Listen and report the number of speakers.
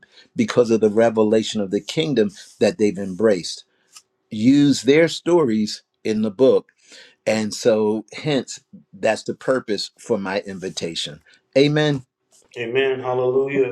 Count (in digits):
2